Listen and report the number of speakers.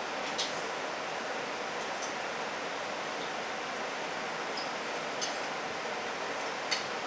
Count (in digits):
0